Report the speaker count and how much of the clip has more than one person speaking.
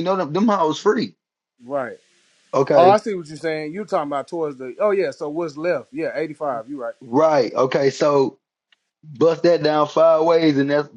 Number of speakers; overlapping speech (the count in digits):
2, about 2%